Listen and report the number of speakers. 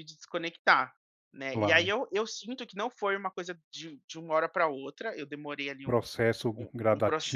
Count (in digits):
2